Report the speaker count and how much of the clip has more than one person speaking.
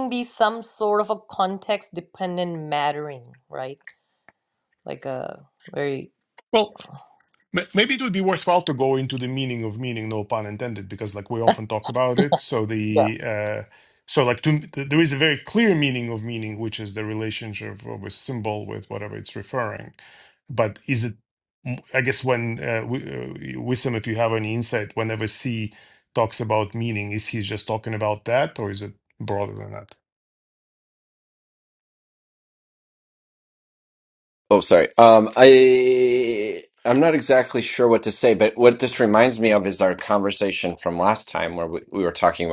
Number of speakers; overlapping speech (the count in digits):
3, under 1%